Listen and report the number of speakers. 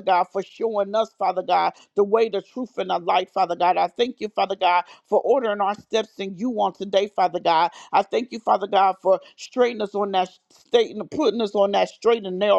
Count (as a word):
one